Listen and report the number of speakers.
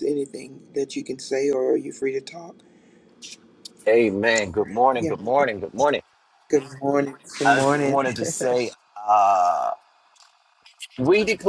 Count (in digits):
2